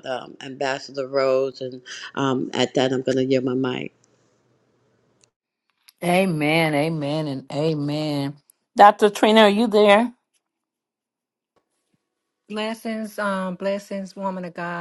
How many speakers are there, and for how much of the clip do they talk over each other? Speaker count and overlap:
3, no overlap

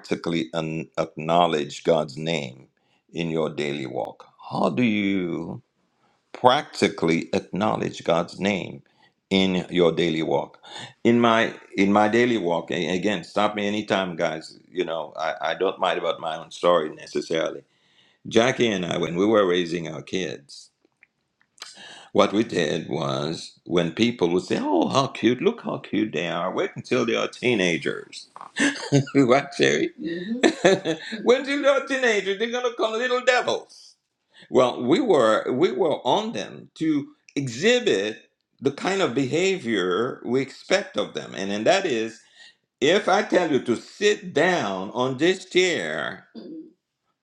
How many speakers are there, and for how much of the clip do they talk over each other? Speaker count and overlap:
1, no overlap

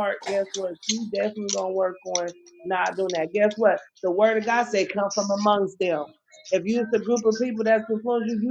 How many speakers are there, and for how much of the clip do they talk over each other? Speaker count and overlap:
1, no overlap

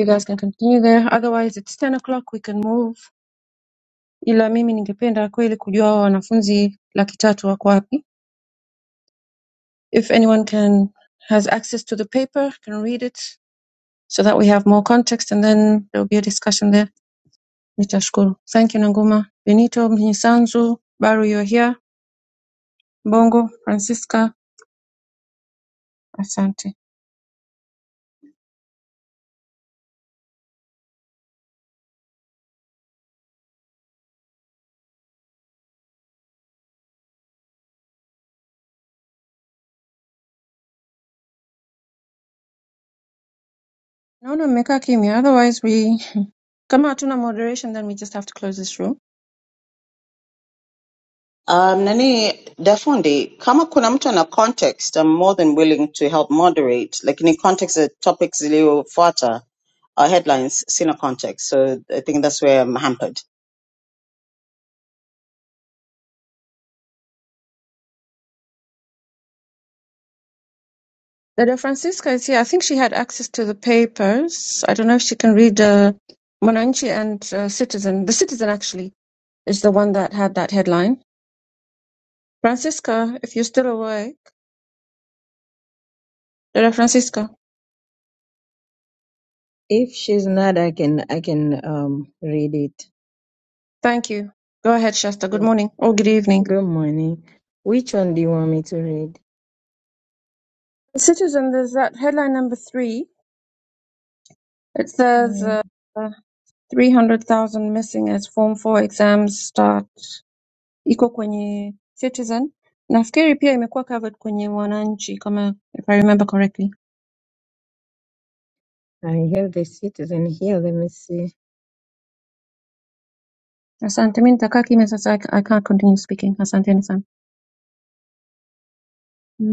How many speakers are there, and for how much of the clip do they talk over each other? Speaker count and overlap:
3, under 1%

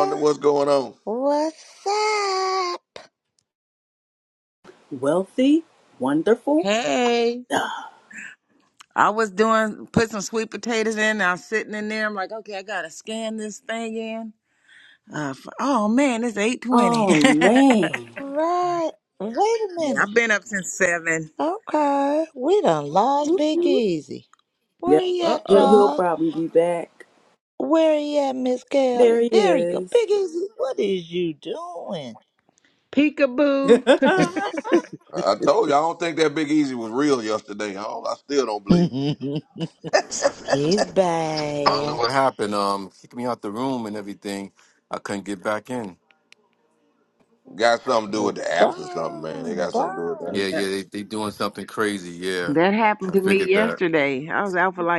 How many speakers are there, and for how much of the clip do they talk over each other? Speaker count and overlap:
5, about 12%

